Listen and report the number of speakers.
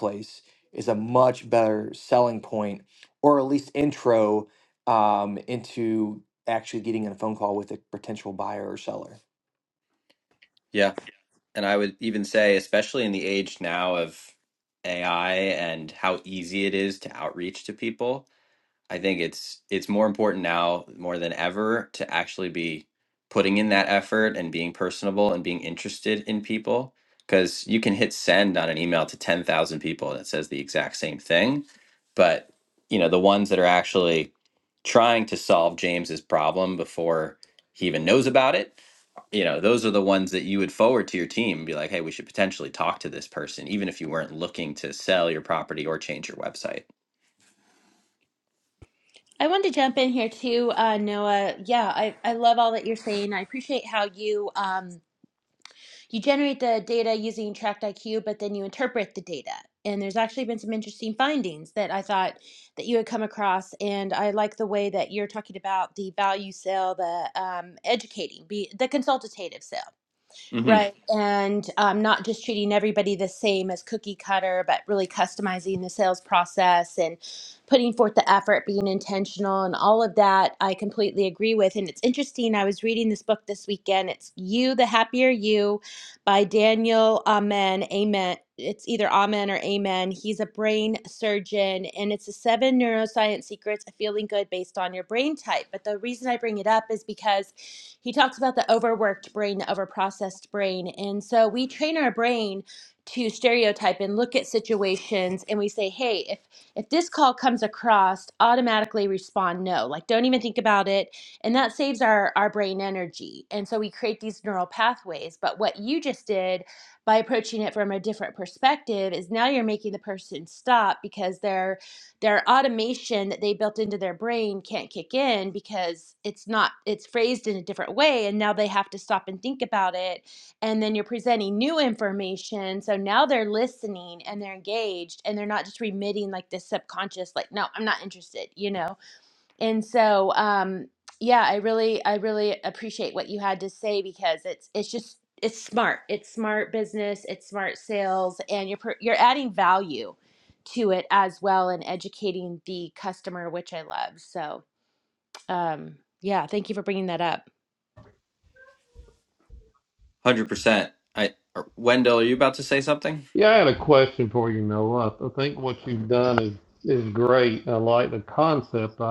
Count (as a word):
four